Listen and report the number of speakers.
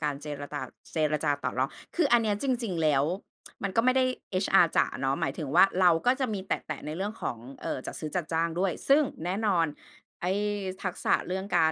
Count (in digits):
1